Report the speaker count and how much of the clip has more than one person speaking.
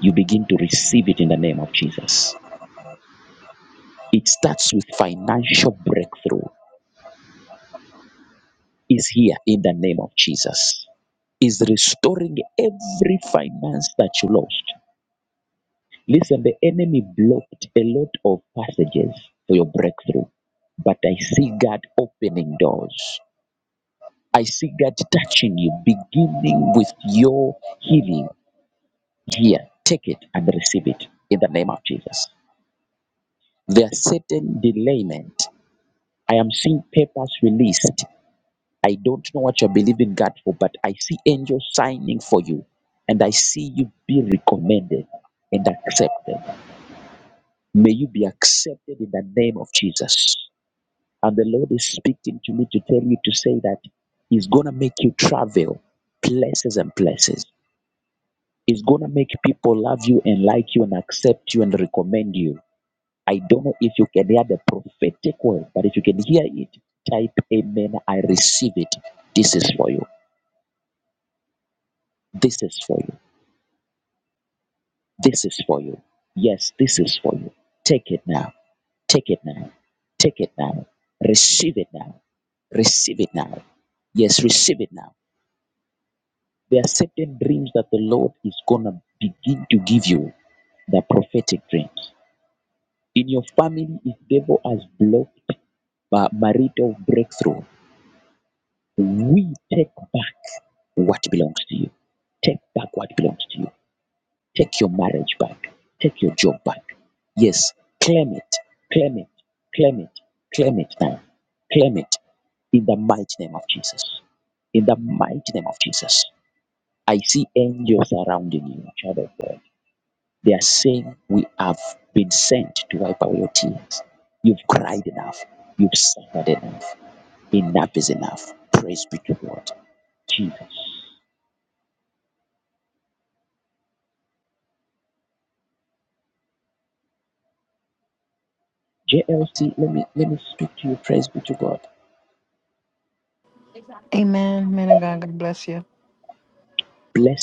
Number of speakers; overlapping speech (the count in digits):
2, no overlap